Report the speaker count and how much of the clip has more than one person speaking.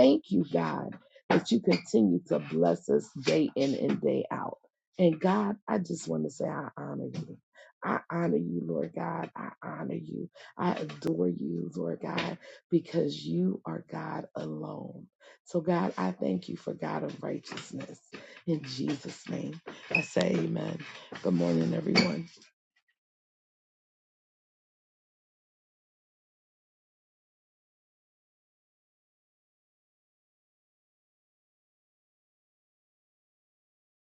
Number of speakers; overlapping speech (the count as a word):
one, no overlap